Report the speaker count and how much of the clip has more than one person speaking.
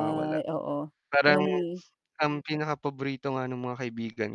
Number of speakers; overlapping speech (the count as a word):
two, about 14%